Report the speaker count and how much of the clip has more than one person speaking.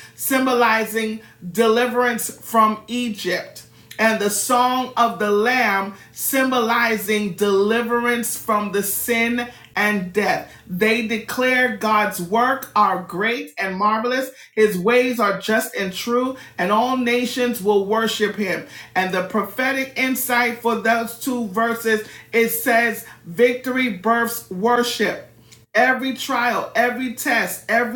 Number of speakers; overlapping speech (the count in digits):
1, no overlap